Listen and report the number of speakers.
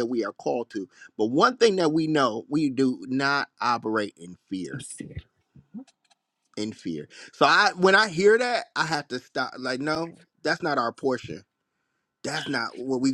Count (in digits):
1